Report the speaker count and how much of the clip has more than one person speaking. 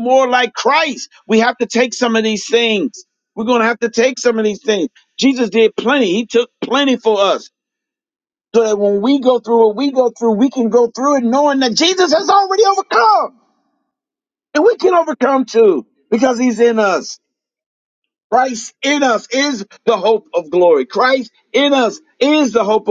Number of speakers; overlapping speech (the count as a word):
one, no overlap